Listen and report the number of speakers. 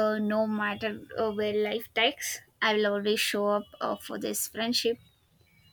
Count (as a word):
one